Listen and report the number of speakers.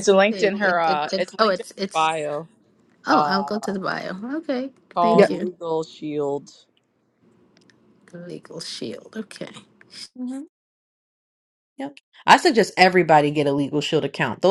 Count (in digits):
3